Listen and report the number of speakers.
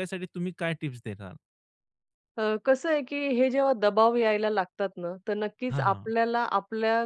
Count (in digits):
2